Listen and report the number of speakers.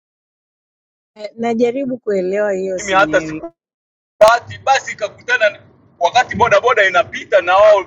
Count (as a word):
two